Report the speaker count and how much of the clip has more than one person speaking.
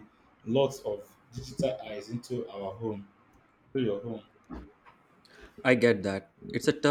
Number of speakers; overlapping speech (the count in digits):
2, no overlap